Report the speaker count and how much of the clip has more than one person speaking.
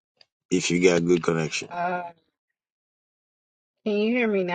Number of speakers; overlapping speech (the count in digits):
2, no overlap